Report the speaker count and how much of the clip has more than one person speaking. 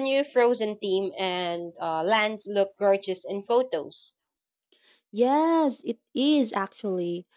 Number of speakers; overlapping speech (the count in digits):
2, no overlap